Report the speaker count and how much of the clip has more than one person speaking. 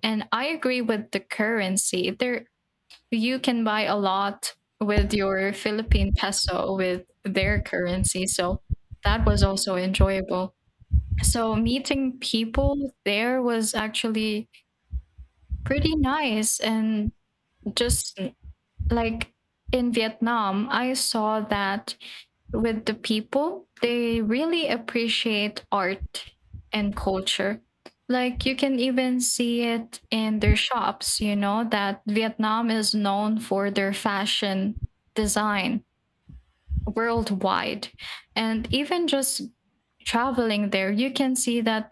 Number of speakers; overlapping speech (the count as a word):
one, no overlap